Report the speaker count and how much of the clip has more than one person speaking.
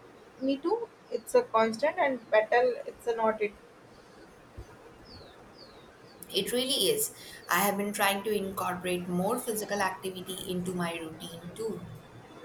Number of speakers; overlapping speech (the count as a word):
two, no overlap